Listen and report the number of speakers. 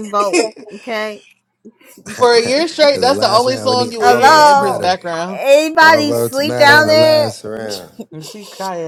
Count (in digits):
3